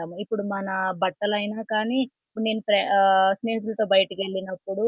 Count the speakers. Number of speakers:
1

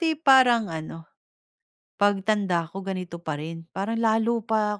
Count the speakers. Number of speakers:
1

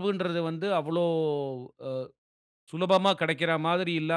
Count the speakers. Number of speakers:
1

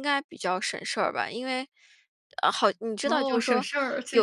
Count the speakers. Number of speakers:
2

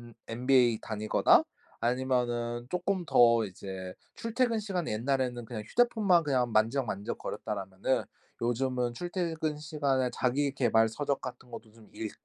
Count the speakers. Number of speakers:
1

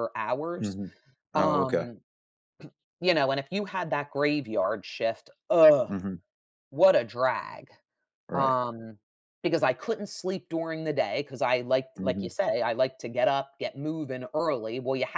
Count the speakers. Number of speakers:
2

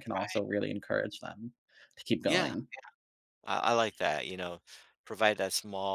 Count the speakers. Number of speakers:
2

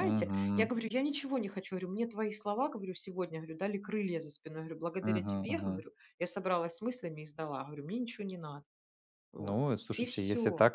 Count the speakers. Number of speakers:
2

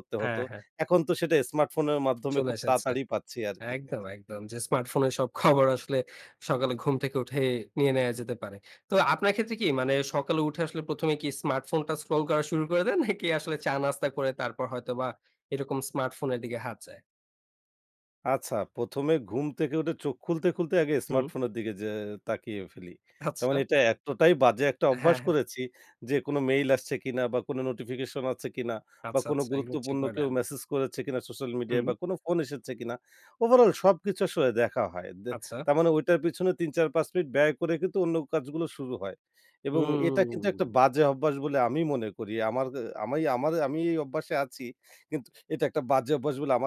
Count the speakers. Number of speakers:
2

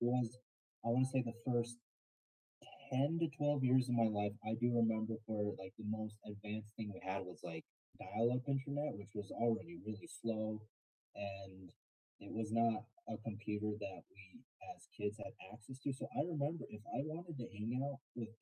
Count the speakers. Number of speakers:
1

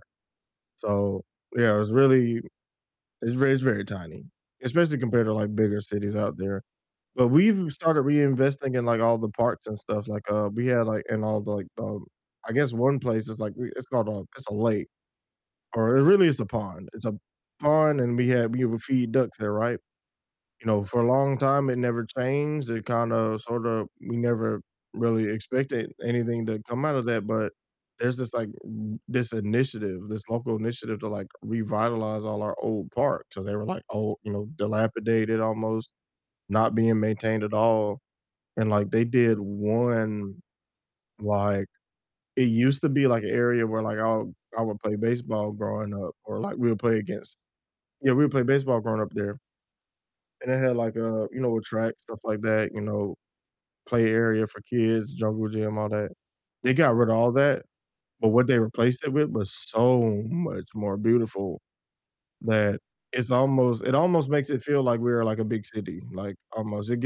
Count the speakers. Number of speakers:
1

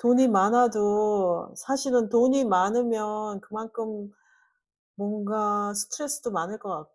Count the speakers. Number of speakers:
1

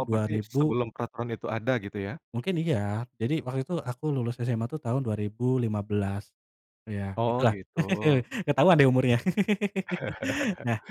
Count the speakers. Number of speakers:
2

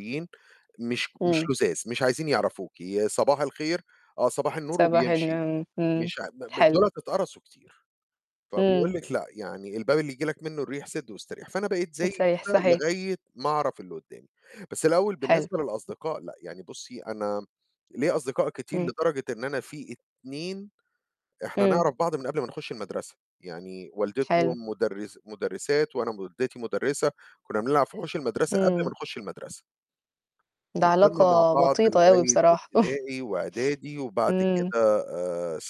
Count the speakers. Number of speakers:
2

